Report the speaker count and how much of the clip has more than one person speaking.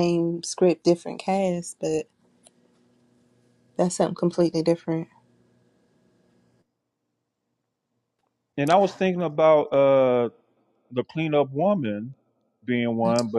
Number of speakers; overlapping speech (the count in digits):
2, no overlap